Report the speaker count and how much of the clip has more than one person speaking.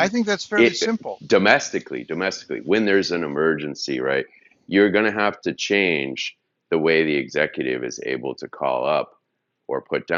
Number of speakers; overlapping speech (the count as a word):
two, about 7%